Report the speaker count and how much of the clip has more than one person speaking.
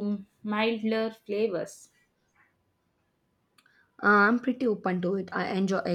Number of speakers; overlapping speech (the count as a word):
two, no overlap